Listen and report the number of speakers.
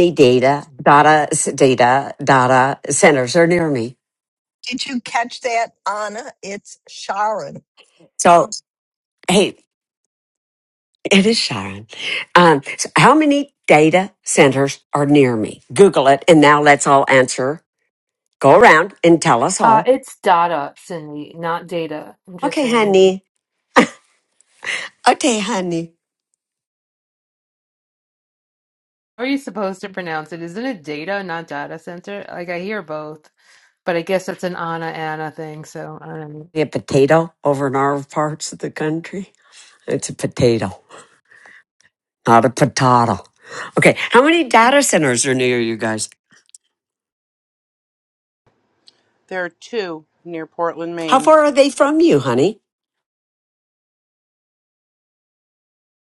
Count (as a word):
four